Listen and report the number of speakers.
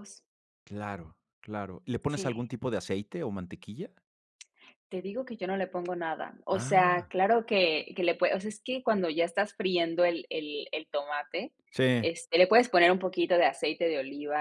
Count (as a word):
two